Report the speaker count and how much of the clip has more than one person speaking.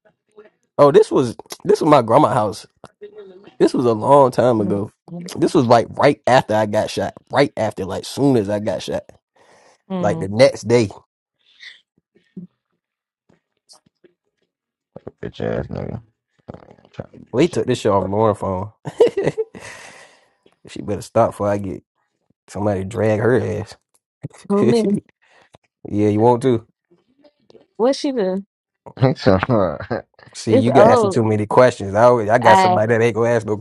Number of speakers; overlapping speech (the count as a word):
three, about 6%